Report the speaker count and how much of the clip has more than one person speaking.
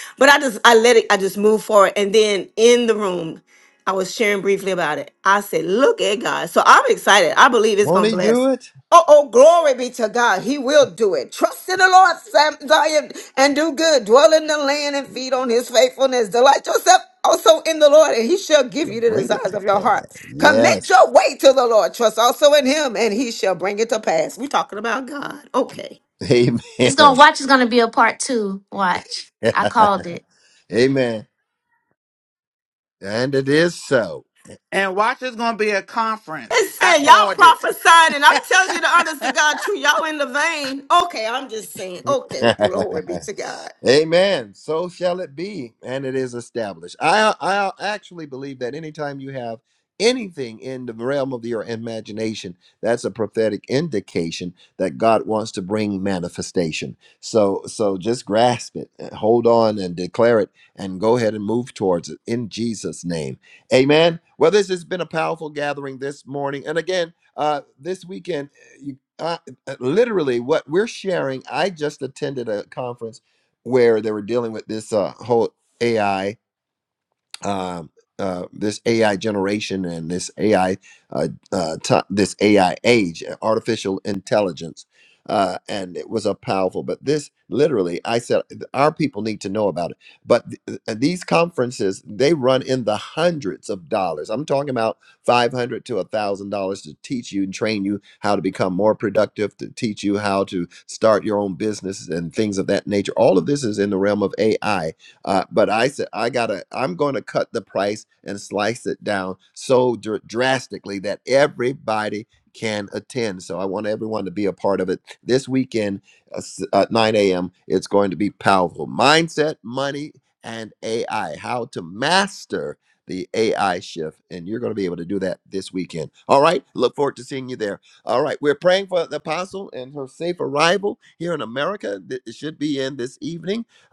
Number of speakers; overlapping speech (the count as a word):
four, about 2%